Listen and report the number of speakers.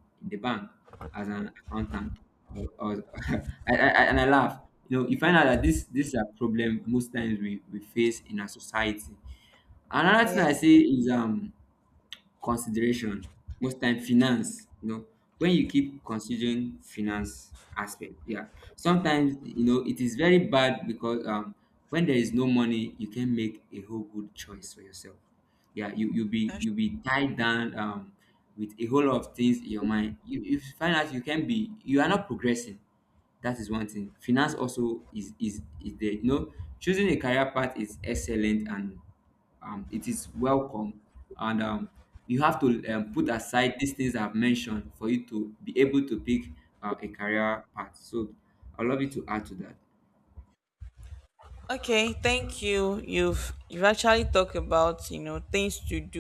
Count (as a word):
two